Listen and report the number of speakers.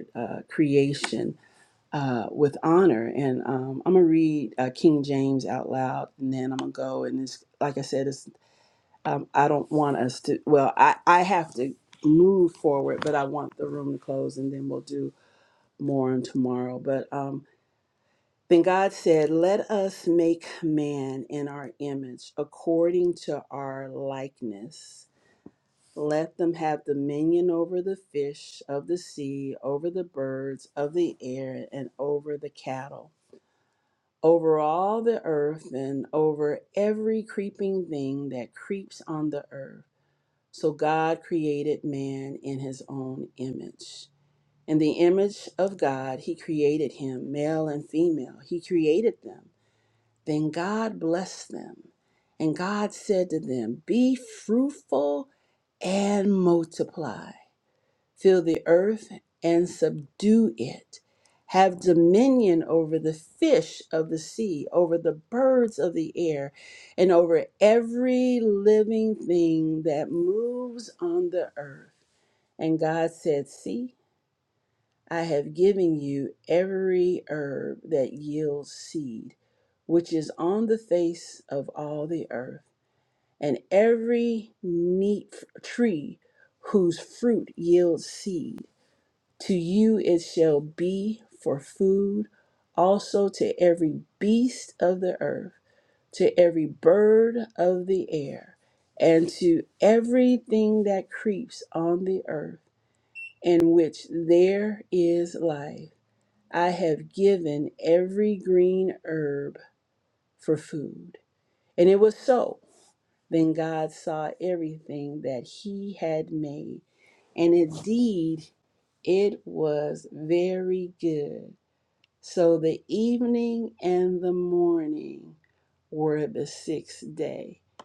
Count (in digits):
1